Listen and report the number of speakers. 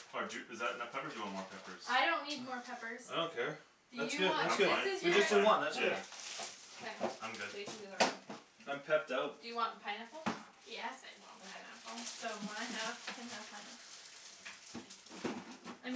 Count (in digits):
4